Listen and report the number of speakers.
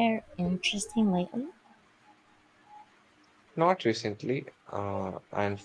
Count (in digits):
2